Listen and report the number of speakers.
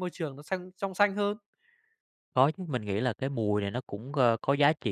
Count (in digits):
2